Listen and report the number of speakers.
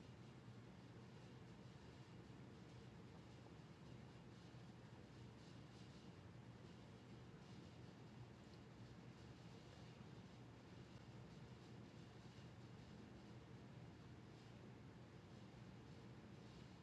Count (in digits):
0